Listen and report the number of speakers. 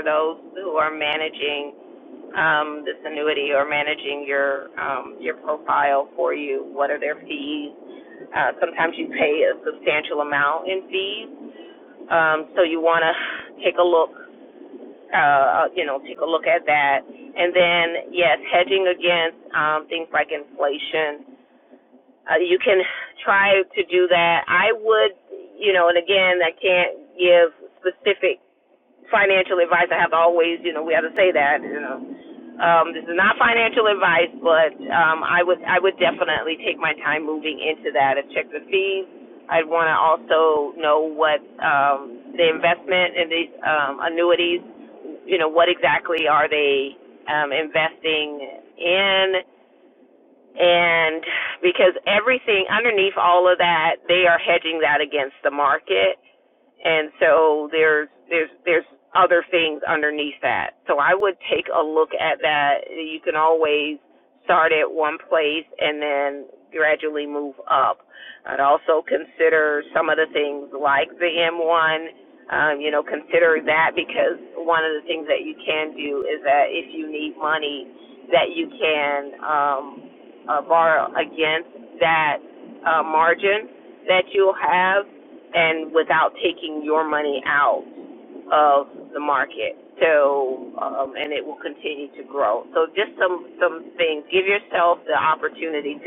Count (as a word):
one